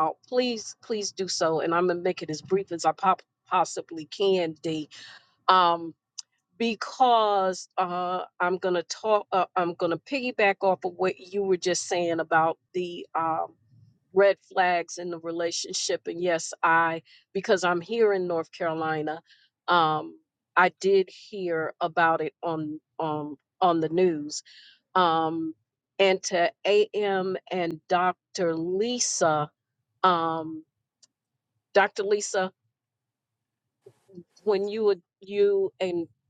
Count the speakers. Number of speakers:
1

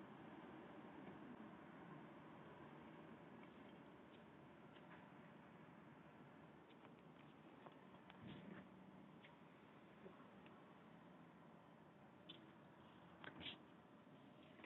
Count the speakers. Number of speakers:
0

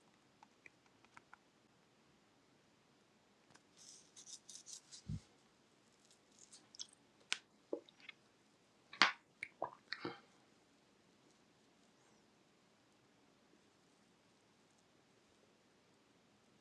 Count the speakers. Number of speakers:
0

